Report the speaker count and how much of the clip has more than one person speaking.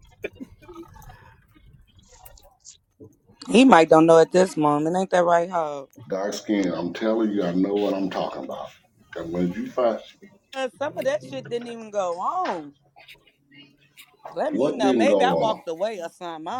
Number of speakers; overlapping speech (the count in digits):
2, about 7%